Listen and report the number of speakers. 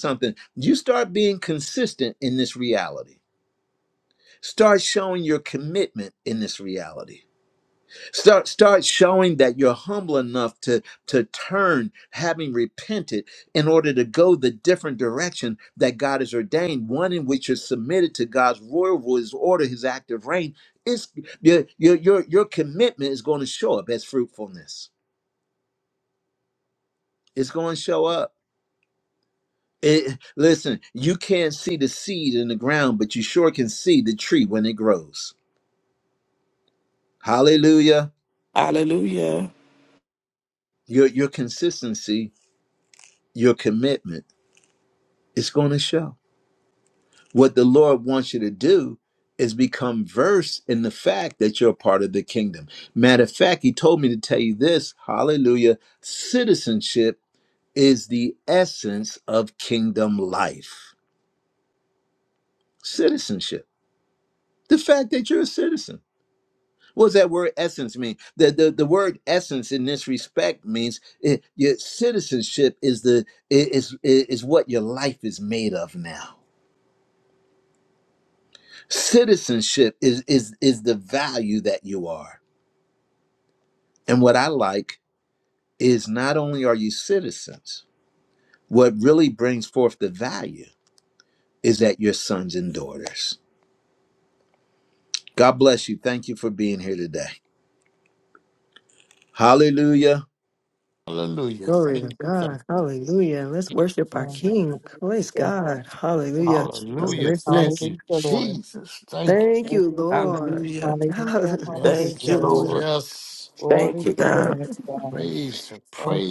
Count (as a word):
five